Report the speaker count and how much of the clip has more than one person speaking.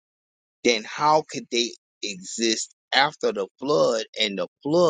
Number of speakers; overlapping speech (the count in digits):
1, no overlap